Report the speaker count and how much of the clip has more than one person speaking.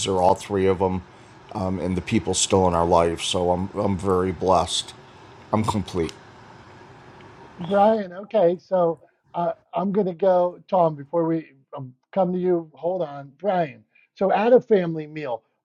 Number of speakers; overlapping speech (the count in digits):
2, no overlap